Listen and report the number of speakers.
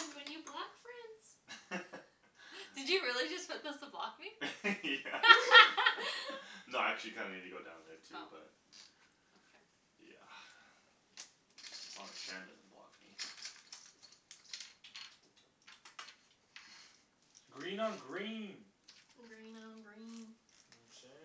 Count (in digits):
4